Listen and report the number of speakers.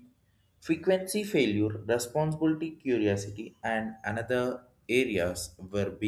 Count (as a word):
one